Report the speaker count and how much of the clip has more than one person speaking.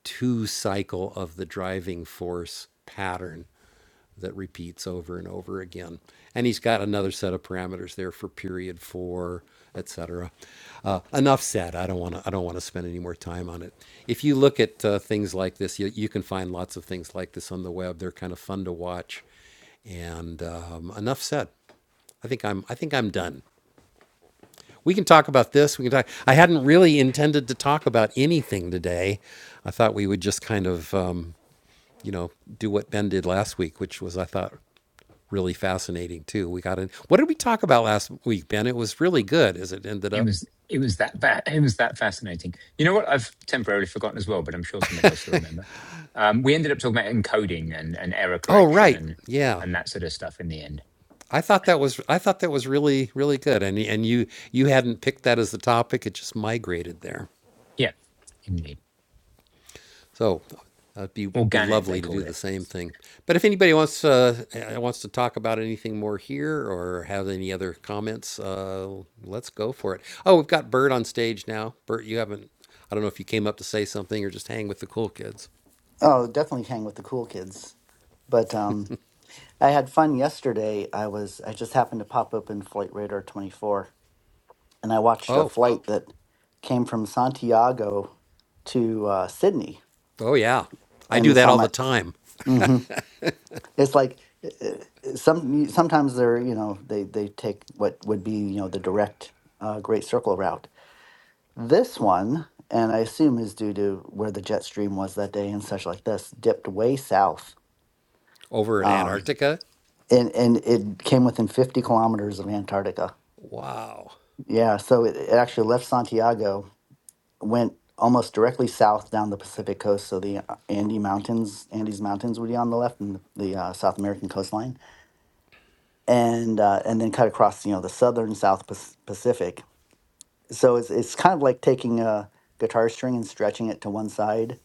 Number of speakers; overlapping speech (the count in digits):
3, about 2%